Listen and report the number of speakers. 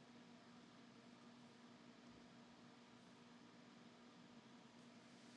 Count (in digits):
0